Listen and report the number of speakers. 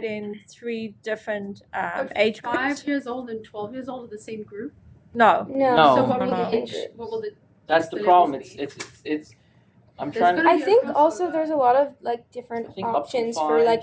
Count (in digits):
4